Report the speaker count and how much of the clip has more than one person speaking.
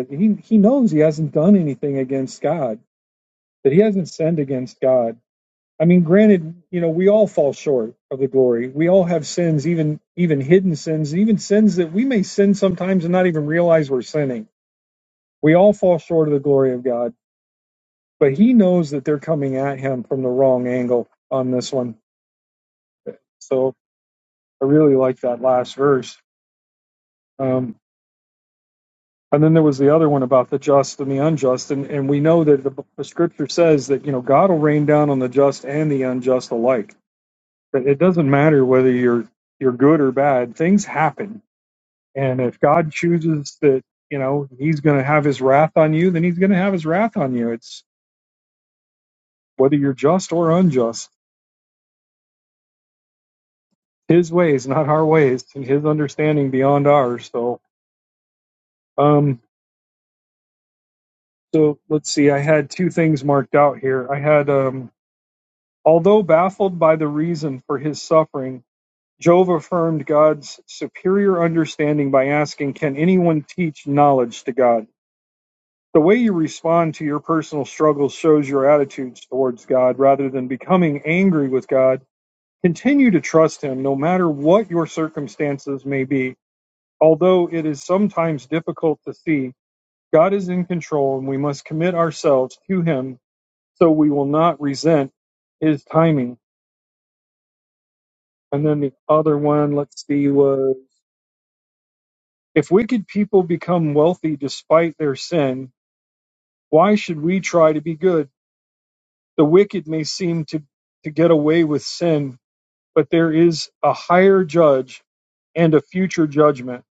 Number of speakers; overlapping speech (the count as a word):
one, no overlap